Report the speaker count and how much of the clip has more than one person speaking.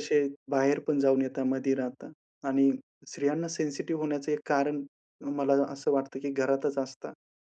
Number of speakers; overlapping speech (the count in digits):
1, no overlap